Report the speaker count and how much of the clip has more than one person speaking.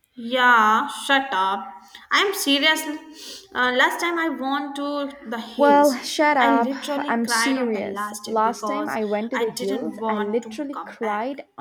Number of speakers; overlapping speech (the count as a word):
two, about 49%